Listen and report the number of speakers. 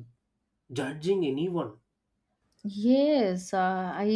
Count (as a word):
two